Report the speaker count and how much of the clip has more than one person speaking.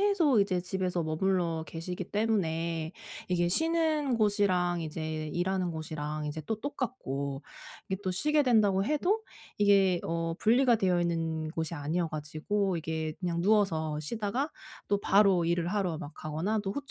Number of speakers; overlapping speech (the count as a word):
one, no overlap